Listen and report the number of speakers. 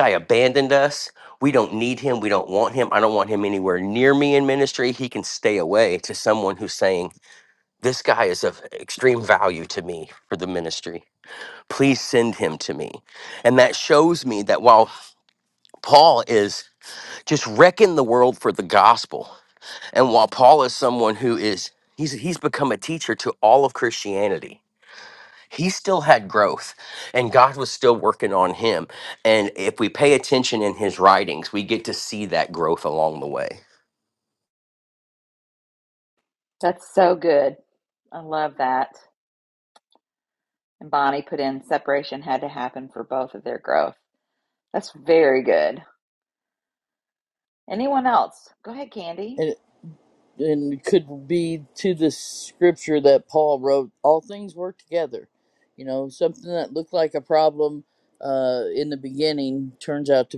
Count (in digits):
3